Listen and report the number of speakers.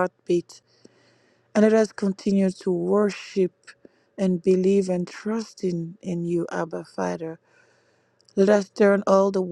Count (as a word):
one